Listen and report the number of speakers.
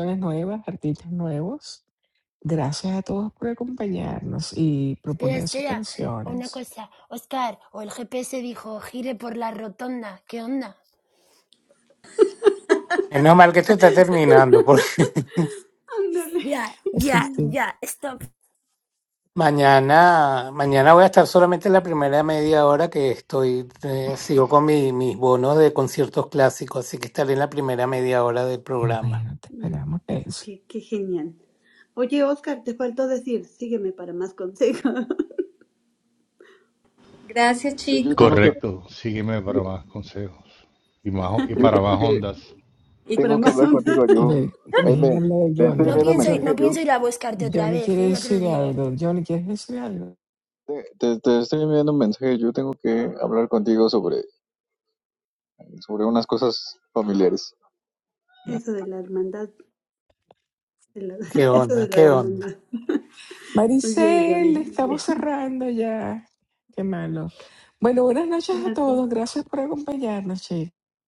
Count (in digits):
7